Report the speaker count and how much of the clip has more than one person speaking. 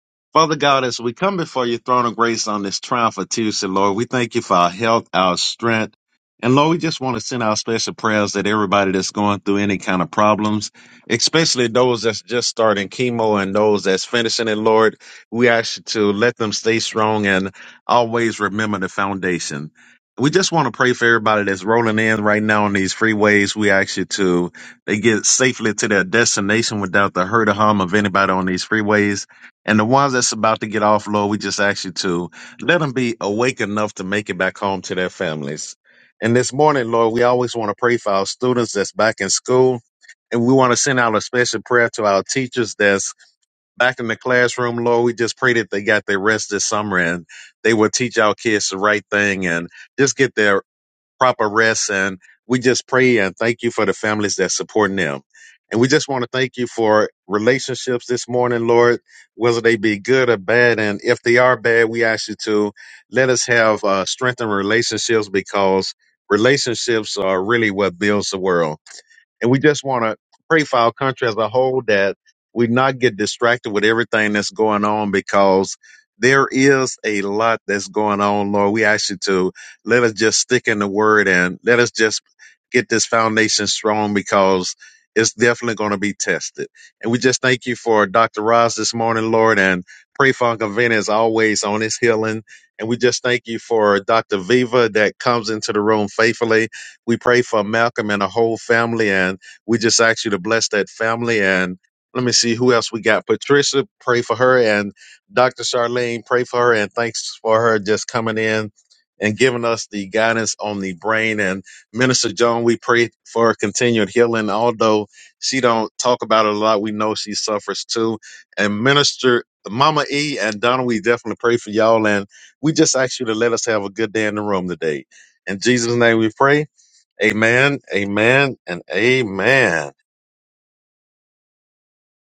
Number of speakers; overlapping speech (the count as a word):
one, no overlap